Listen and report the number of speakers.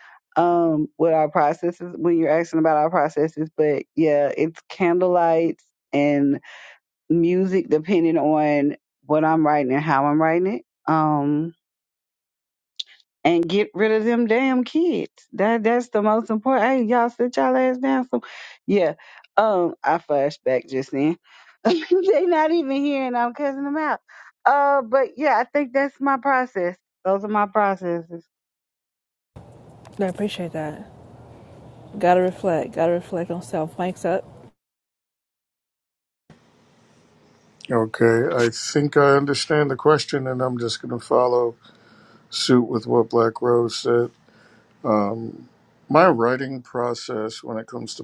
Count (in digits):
3